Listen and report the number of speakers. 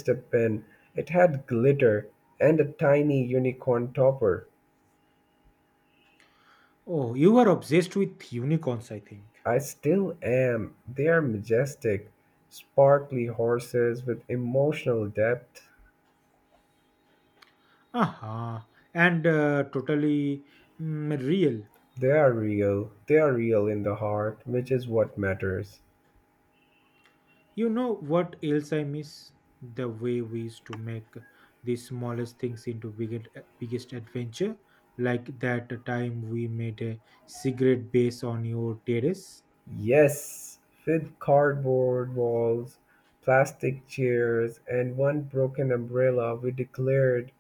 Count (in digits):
2